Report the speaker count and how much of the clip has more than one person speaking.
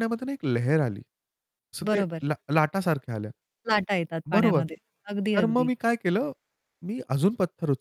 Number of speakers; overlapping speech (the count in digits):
2, about 14%